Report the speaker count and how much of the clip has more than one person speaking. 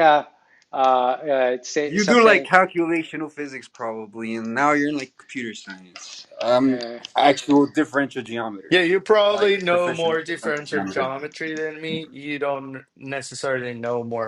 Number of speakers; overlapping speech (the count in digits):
3, about 19%